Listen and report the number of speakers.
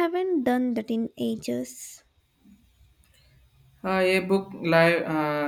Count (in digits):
2